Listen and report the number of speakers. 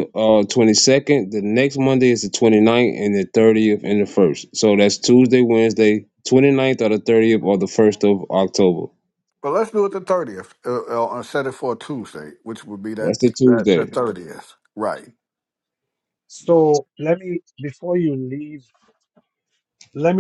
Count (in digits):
3